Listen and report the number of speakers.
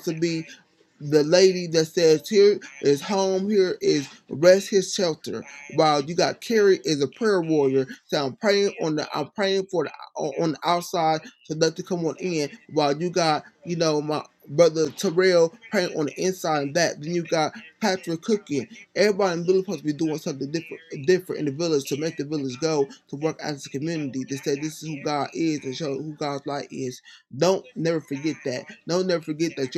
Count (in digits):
1